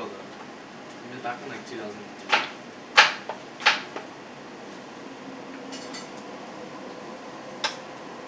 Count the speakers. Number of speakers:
one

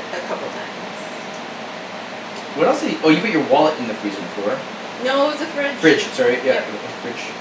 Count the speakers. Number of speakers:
two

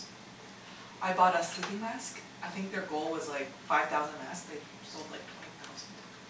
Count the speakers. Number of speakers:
one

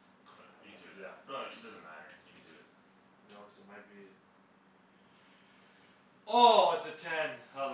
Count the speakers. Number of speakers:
two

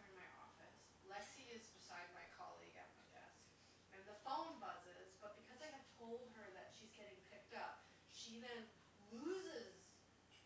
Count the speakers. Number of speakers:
one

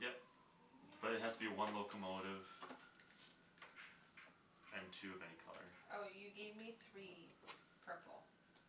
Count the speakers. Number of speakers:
two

